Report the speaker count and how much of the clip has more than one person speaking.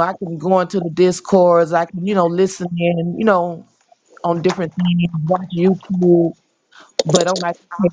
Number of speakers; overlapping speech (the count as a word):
one, no overlap